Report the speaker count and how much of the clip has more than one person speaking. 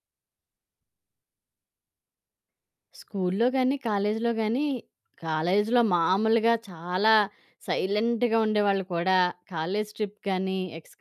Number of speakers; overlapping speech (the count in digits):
1, no overlap